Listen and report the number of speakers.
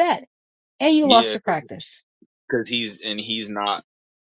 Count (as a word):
two